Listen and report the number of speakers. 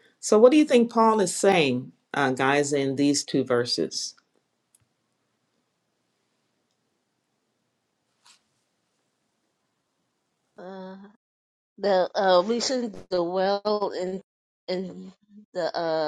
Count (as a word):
two